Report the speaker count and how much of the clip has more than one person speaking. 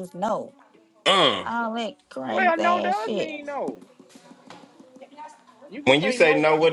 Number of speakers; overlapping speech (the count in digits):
3, about 26%